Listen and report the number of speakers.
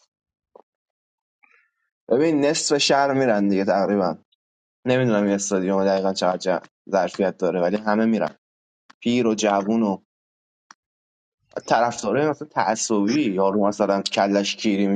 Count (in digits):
1